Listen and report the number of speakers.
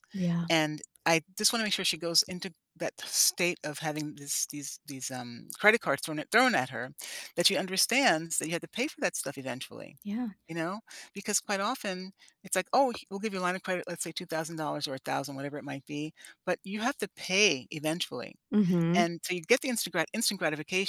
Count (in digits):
2